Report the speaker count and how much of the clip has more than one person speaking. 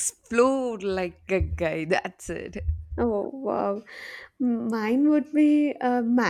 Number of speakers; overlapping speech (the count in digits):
2, no overlap